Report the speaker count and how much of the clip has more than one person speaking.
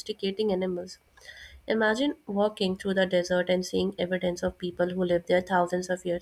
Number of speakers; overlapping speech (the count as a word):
one, no overlap